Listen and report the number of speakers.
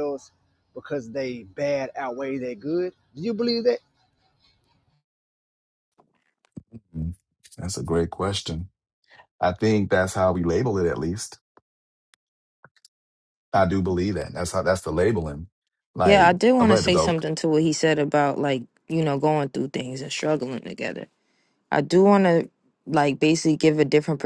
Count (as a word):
three